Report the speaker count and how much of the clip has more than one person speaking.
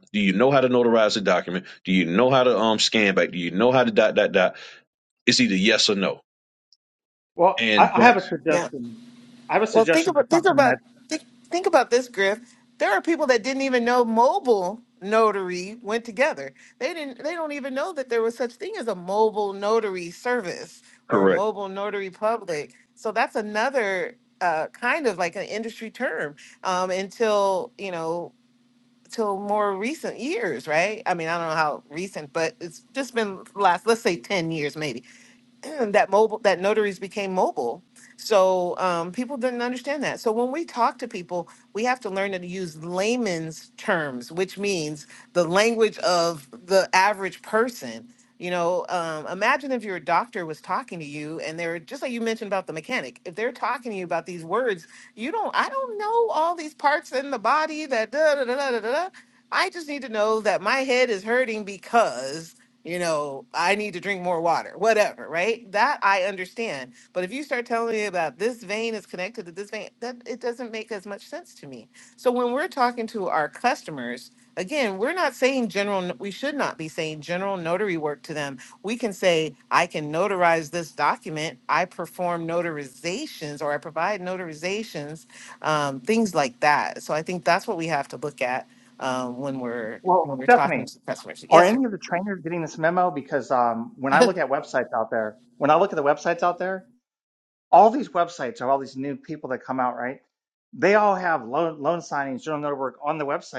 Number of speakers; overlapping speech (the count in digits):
3, about 3%